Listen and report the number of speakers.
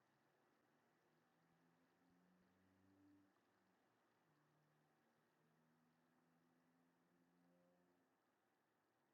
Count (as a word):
zero